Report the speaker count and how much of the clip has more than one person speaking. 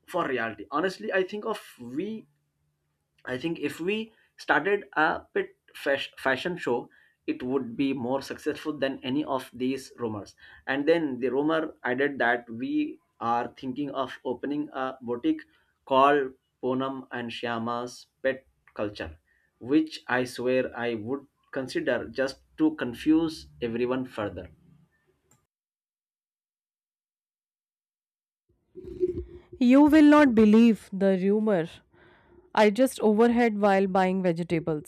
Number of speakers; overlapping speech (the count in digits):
2, no overlap